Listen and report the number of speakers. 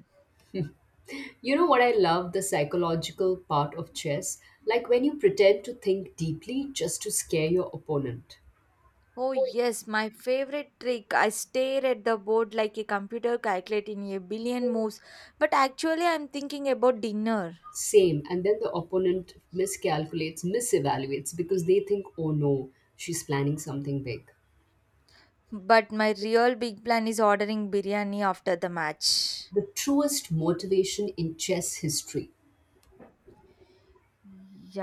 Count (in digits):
2